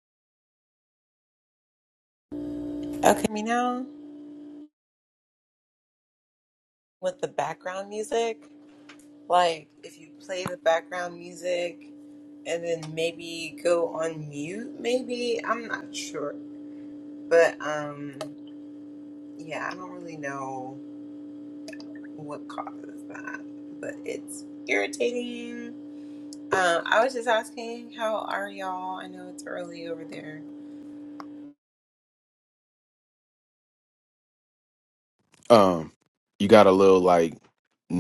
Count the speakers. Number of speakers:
2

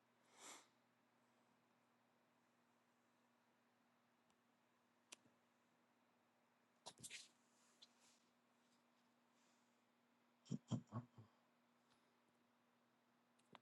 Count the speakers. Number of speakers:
0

